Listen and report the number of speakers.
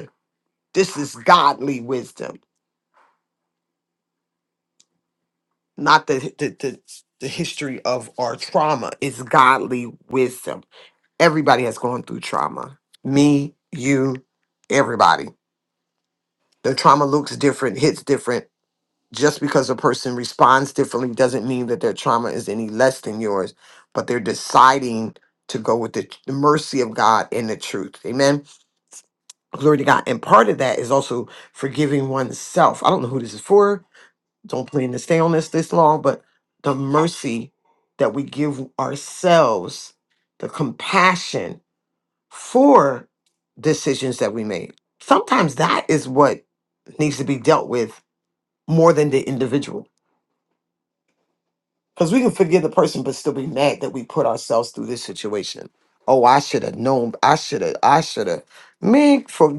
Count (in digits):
1